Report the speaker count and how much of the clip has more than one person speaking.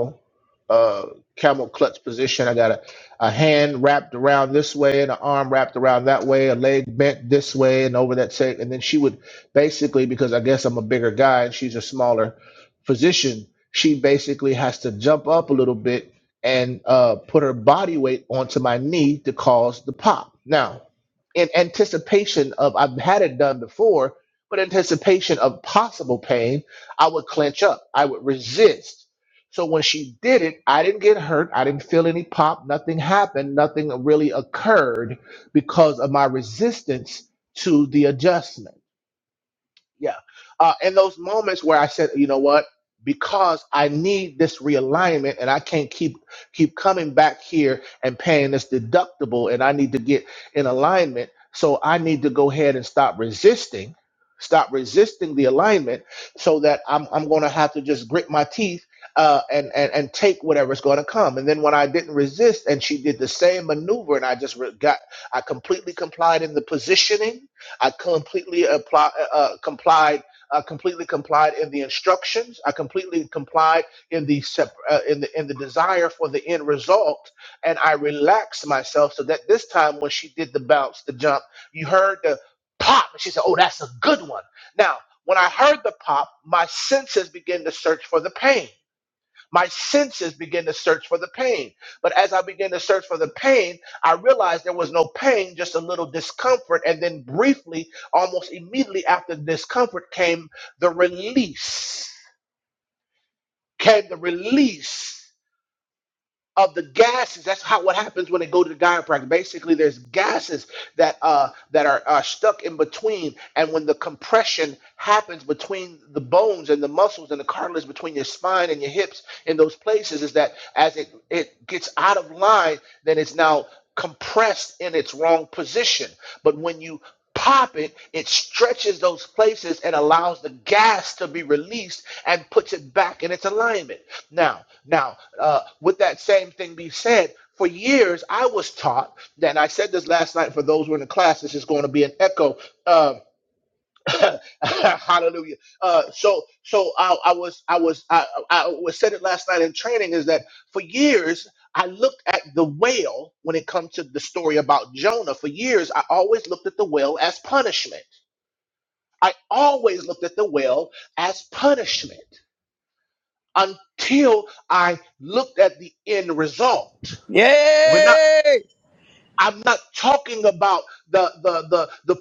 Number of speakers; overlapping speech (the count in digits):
2, under 1%